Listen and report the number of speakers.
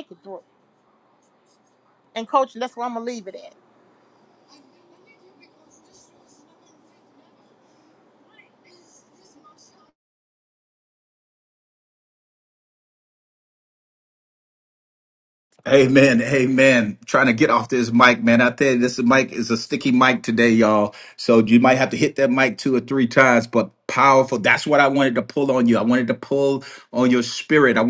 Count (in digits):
2